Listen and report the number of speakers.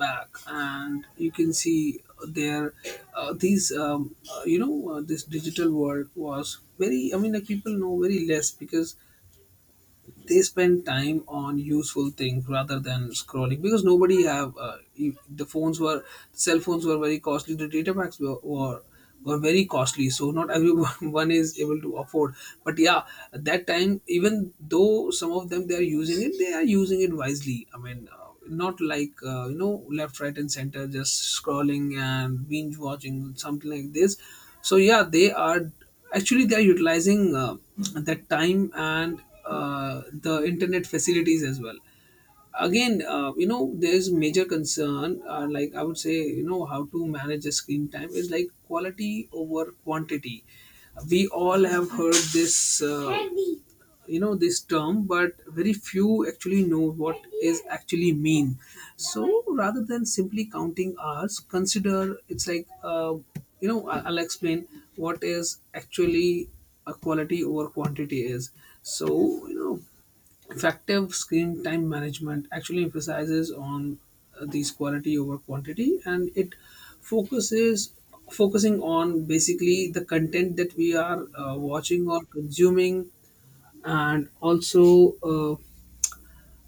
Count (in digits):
1